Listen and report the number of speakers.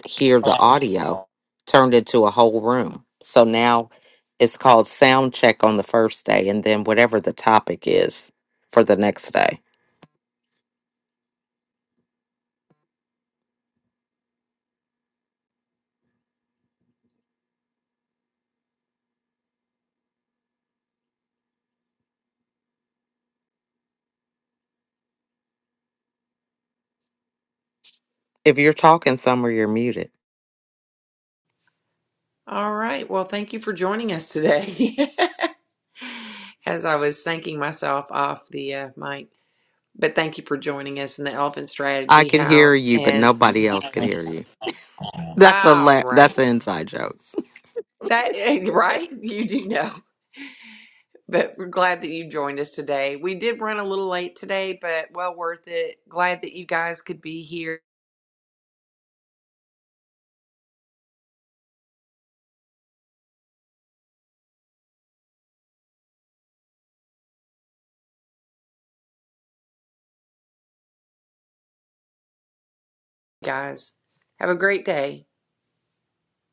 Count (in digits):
2